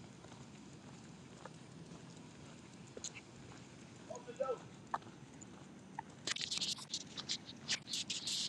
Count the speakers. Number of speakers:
zero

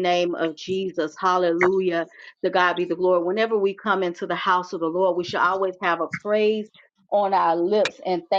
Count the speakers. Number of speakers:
one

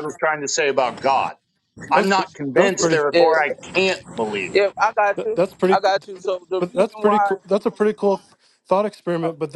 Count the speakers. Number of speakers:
three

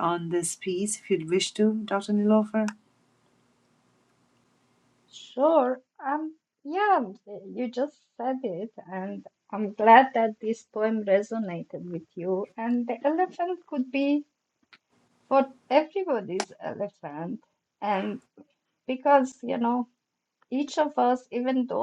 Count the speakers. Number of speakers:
two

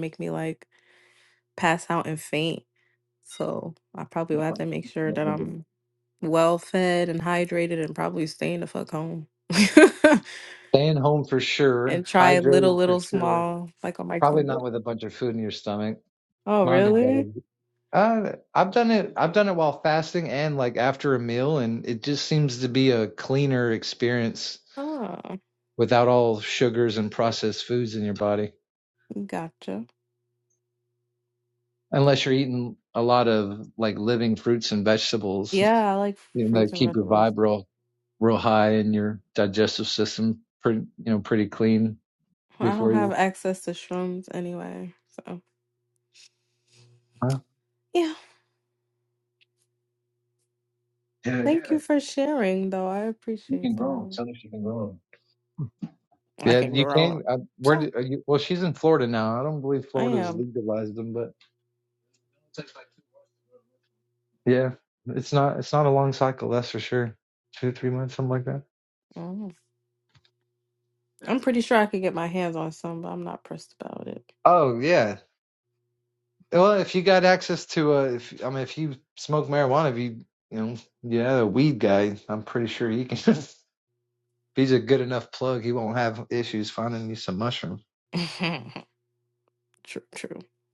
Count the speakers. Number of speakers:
two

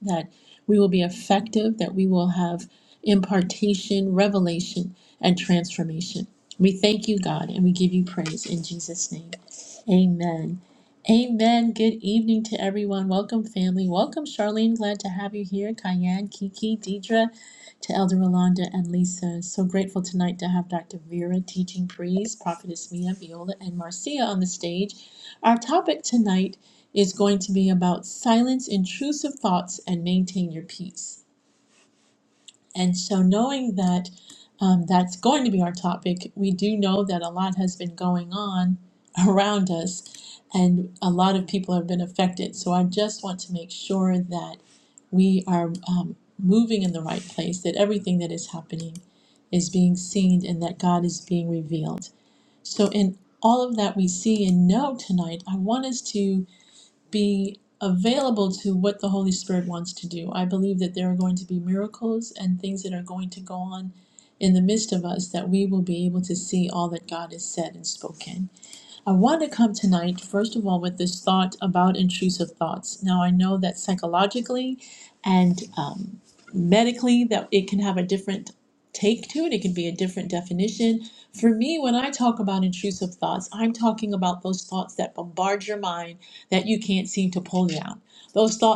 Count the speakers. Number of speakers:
one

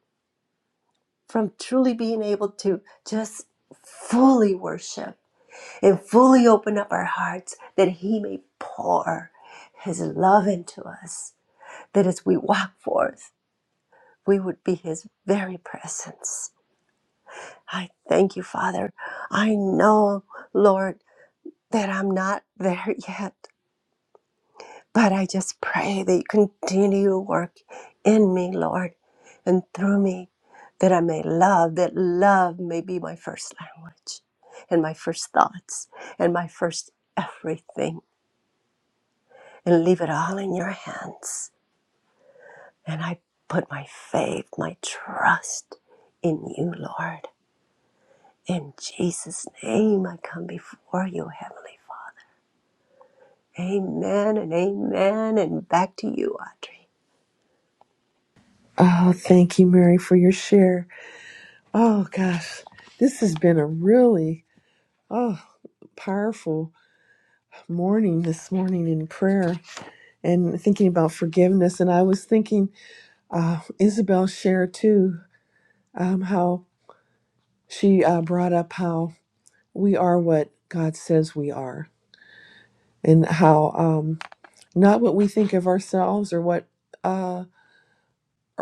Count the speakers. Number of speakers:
two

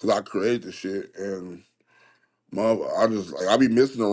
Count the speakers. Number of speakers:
one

